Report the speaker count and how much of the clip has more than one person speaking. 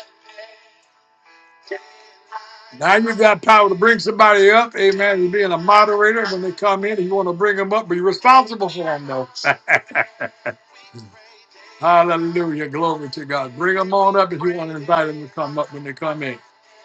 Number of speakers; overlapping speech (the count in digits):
1, no overlap